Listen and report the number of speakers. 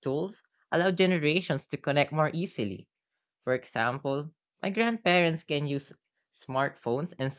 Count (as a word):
one